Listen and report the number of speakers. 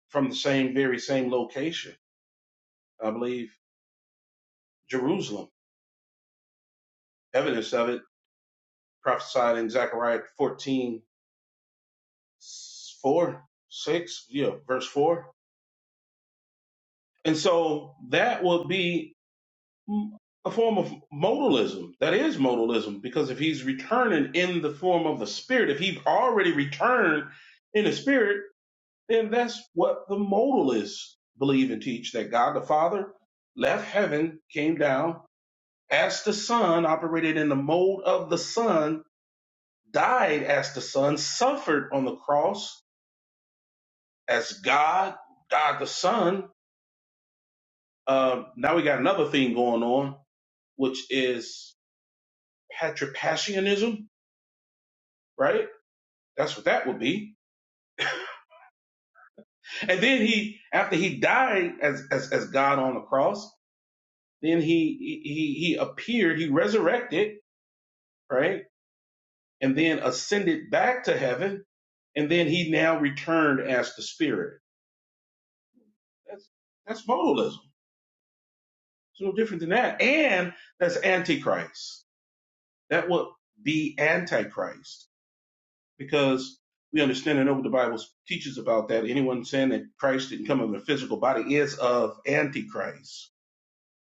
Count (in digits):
1